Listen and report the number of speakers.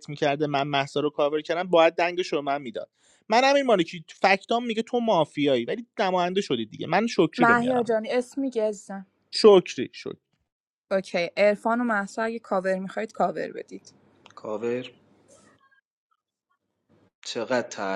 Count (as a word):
three